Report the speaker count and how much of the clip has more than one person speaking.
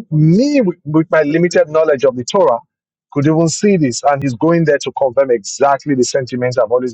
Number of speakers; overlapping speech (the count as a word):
one, no overlap